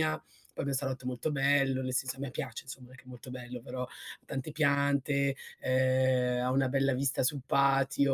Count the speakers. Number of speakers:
1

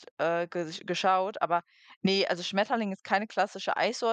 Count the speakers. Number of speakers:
1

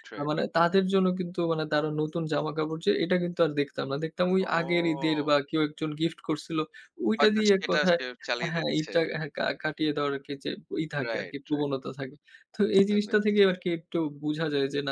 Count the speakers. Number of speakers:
2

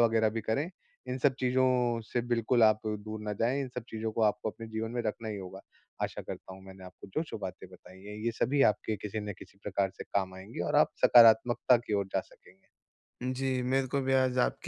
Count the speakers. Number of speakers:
2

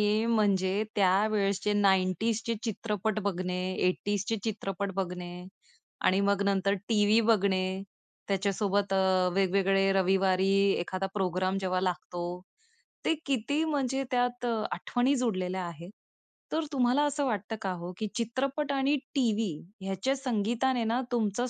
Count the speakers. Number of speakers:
1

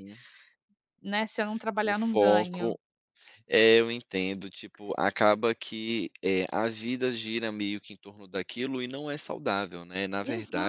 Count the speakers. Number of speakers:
2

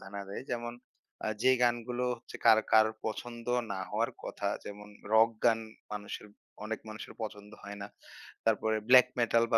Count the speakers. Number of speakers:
1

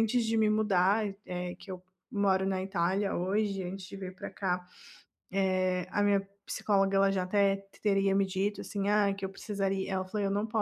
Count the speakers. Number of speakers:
1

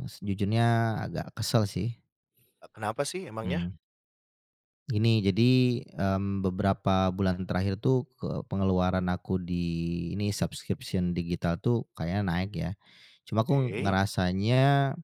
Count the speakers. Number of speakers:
2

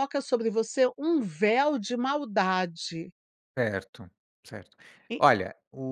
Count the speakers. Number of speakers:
2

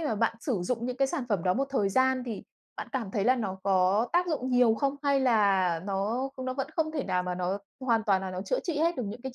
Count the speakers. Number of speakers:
1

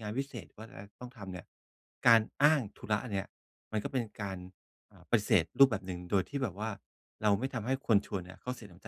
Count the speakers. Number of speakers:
1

